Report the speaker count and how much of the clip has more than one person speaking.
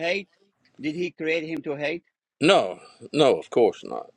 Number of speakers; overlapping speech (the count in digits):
2, no overlap